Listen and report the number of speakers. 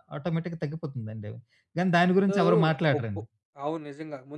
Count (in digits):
2